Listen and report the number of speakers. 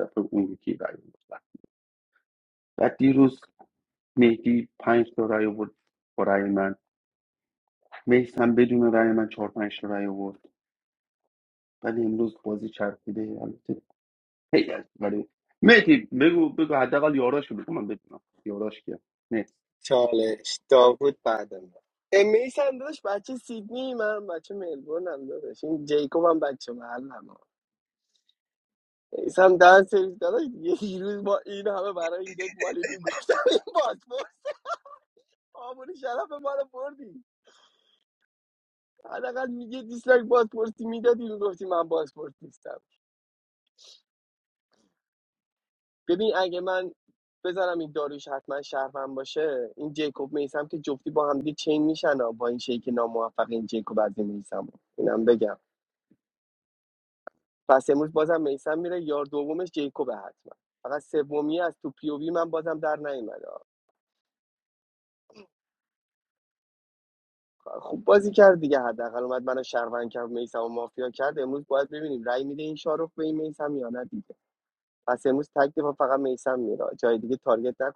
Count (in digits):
2